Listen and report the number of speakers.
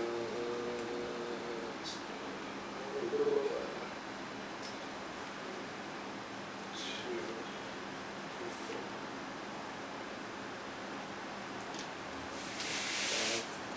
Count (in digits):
1